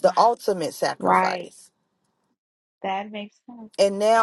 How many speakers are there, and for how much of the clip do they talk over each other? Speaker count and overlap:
two, about 11%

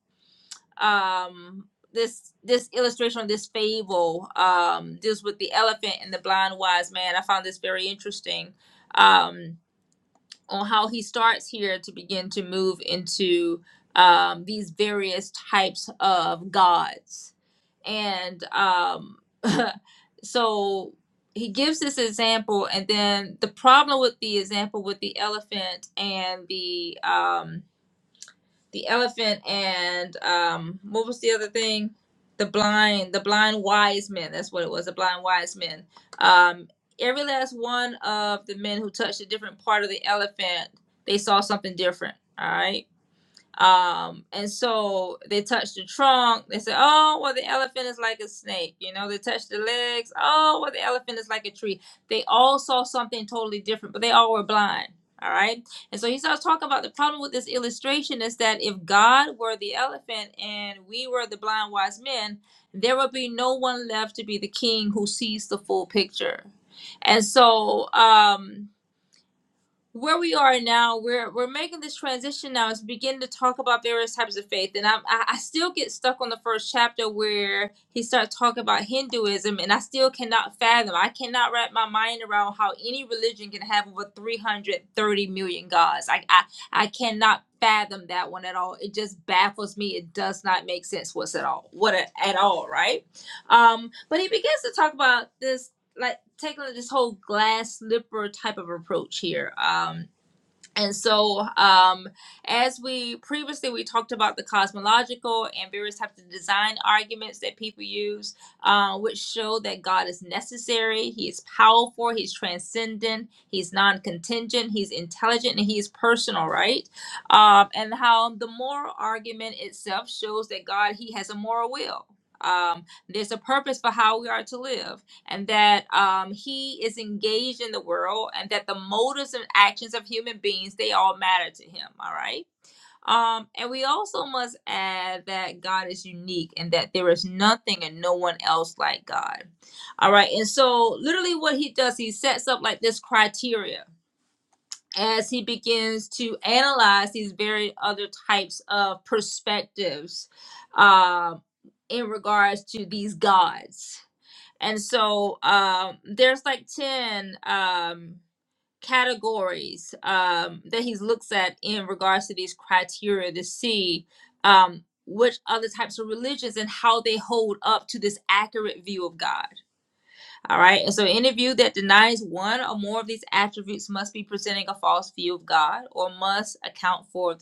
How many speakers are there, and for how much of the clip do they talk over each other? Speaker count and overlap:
one, no overlap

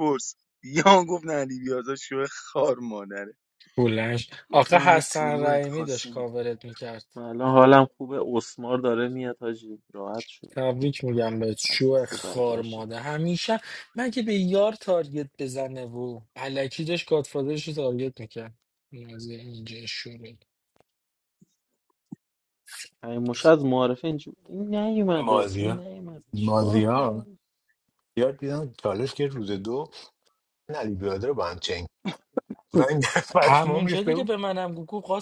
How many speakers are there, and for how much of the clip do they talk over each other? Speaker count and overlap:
four, about 14%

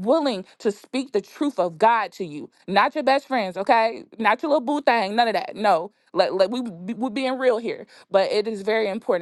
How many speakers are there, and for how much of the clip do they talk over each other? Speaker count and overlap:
one, no overlap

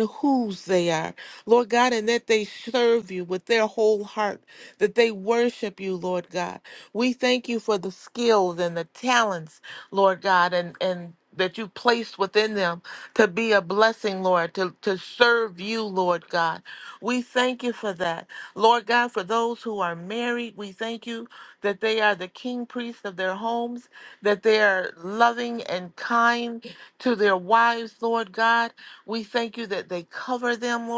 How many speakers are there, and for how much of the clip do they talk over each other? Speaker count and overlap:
one, no overlap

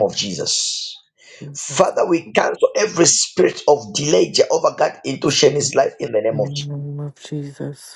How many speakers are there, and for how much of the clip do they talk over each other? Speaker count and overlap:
two, about 4%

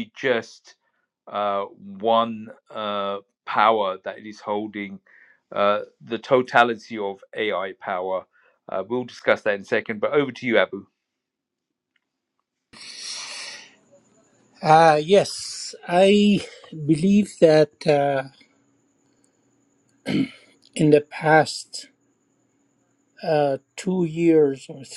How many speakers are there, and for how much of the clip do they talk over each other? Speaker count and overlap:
two, no overlap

